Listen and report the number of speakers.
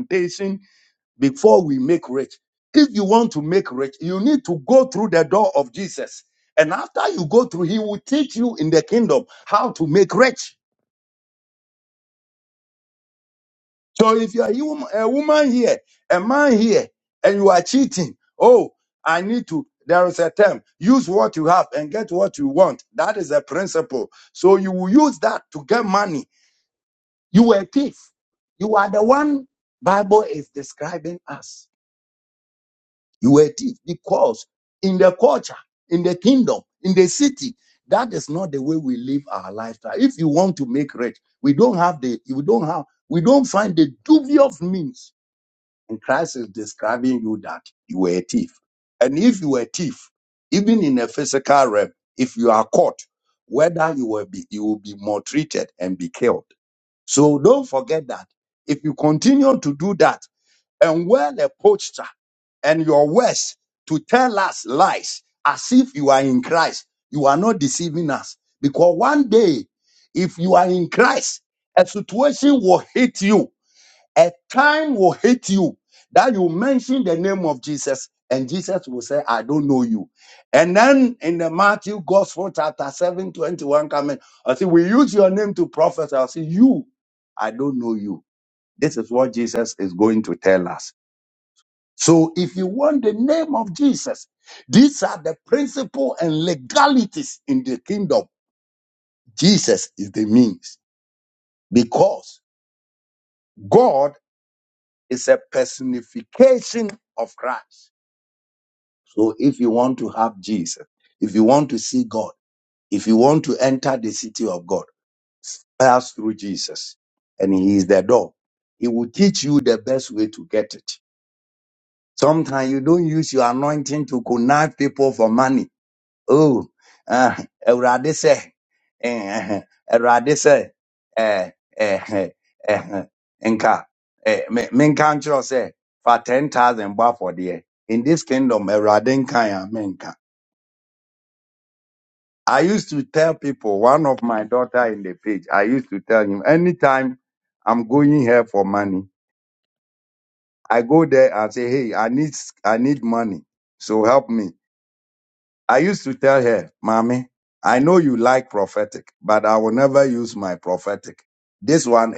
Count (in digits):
1